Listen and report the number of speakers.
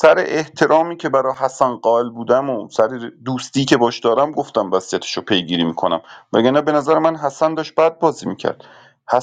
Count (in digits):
1